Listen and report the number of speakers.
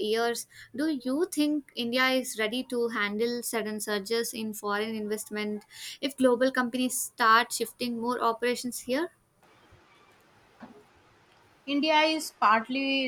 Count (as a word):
two